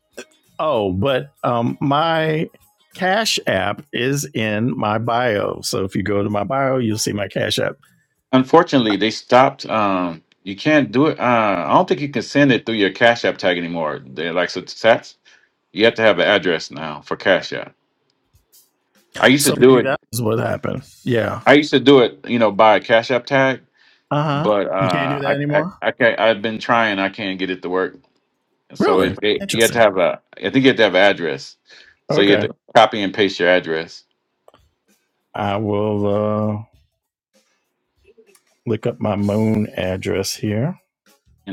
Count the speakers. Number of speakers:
2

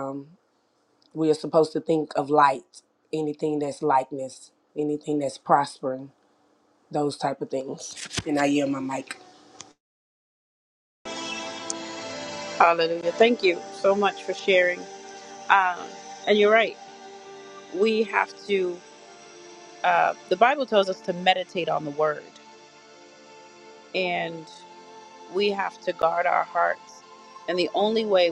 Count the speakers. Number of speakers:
2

